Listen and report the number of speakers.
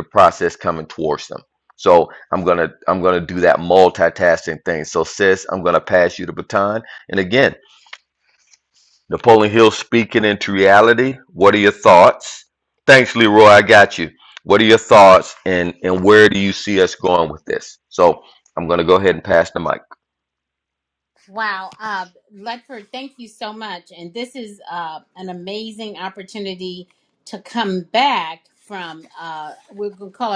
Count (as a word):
two